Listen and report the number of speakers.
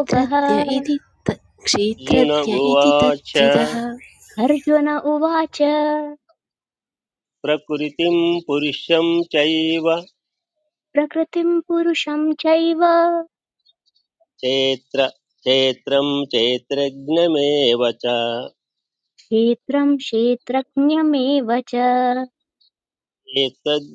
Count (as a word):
three